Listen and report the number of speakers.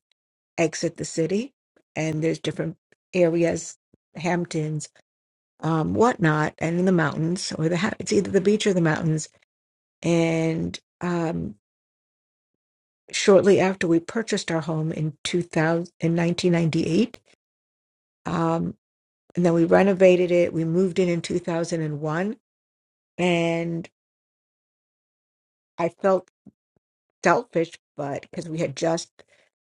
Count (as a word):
one